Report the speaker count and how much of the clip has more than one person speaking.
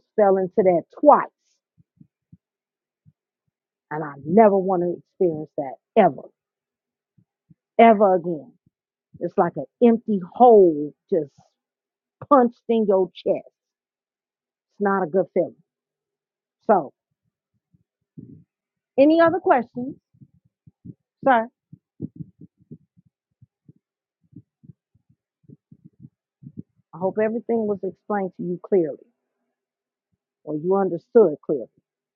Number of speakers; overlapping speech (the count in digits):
1, no overlap